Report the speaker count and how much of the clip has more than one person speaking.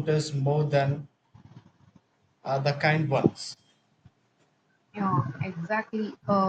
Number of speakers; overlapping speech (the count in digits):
2, no overlap